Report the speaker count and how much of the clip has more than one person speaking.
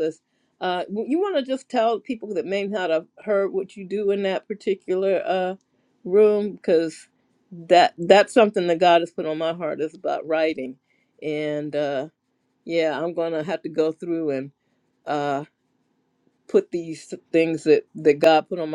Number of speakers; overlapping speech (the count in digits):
1, no overlap